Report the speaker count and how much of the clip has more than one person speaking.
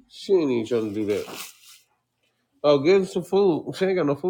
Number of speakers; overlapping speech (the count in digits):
1, no overlap